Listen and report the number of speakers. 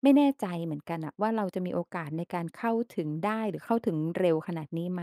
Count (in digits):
1